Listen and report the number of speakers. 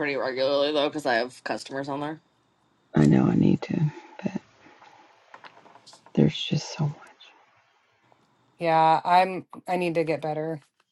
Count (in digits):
3